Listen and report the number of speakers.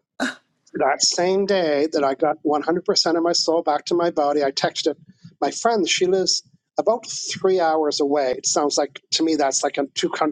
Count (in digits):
1